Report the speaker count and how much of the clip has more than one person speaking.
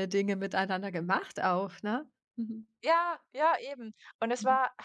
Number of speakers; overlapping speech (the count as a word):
two, about 3%